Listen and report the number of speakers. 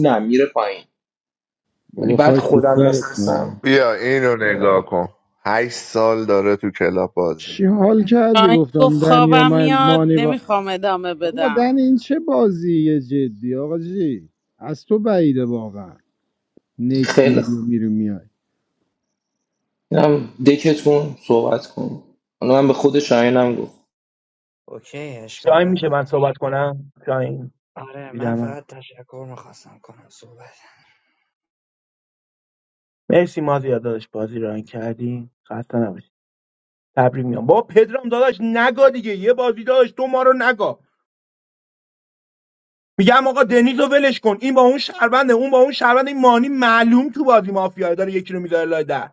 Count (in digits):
6